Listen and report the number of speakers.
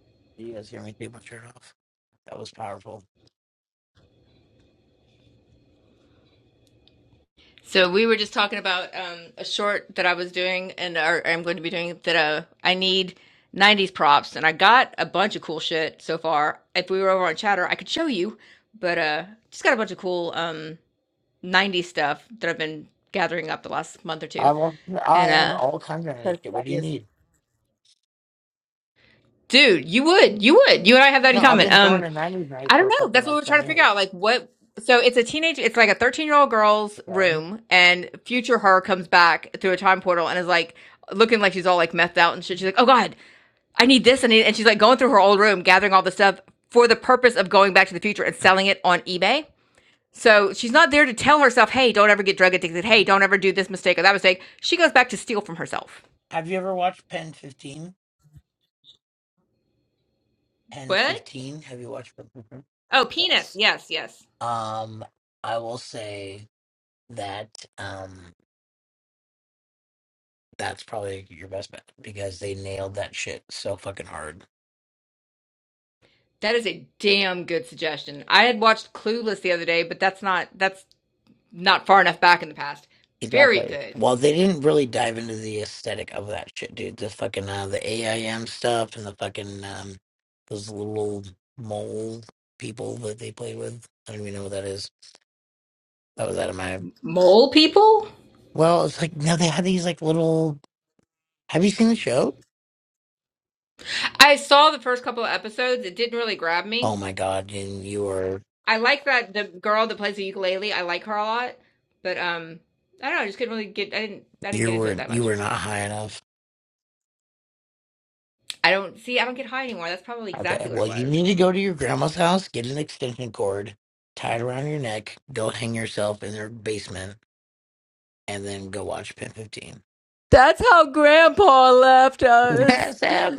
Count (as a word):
two